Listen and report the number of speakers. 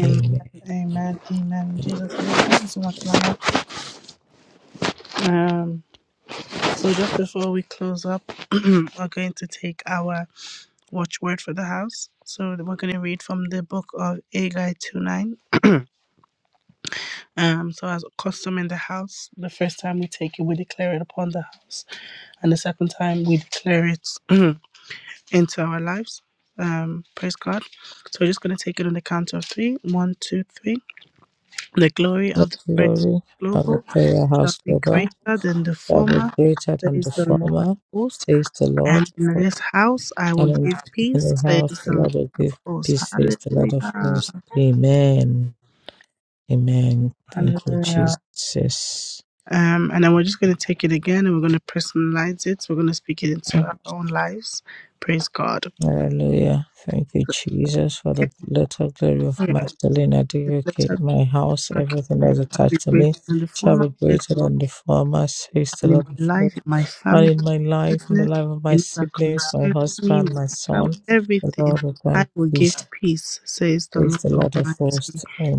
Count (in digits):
2